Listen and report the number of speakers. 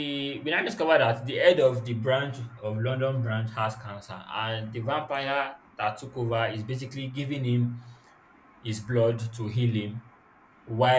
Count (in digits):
1